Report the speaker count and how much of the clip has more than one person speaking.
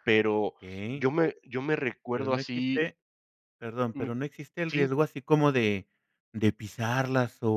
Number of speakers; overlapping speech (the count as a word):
two, about 14%